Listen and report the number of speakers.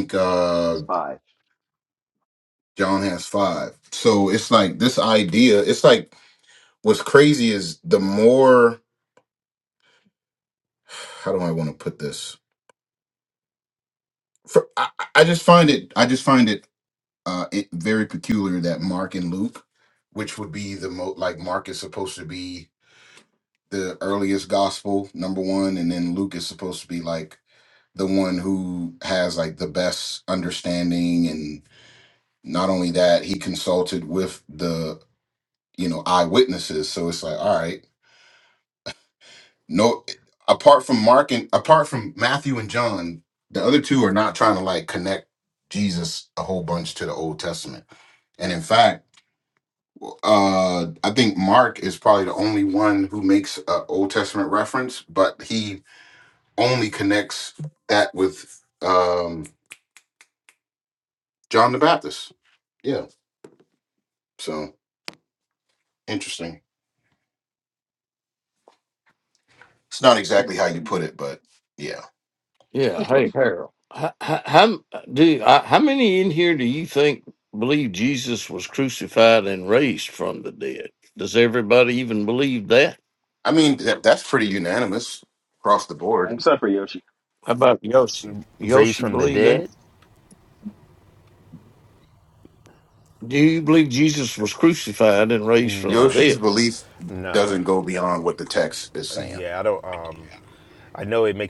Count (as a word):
four